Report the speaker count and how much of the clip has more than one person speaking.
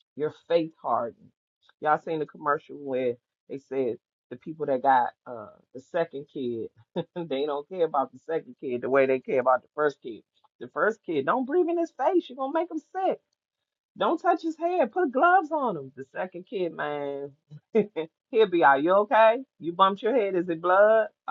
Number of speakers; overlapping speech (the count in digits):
1, no overlap